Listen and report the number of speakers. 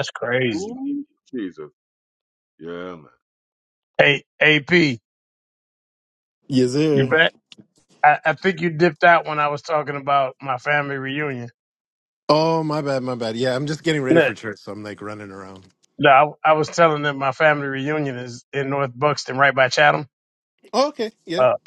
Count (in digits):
3